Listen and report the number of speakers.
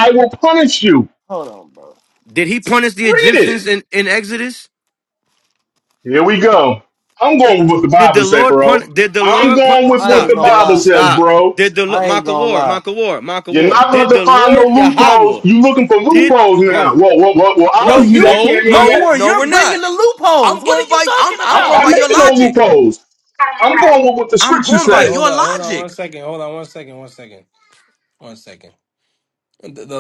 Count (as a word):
four